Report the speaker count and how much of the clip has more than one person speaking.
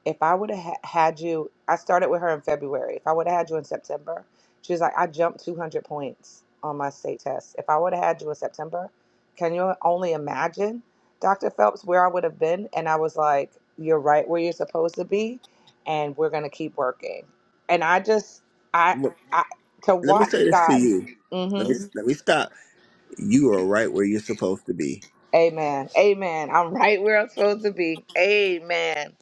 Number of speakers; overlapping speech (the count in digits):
2, about 3%